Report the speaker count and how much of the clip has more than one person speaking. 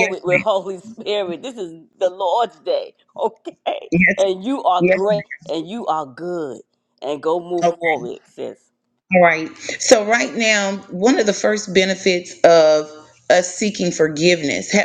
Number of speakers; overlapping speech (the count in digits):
2, about 5%